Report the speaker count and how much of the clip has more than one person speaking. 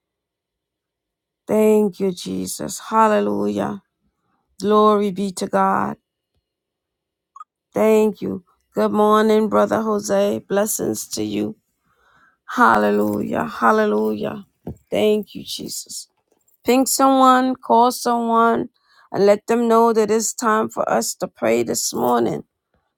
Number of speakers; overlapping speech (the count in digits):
1, no overlap